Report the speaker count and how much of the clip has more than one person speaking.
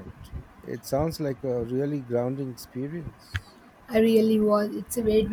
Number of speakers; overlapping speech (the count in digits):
2, no overlap